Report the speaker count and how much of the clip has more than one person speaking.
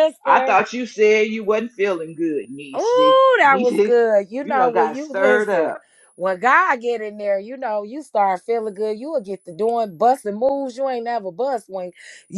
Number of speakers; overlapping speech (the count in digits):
2, about 25%